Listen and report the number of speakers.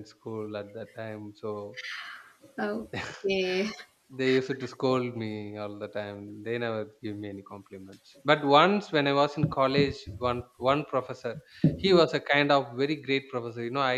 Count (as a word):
two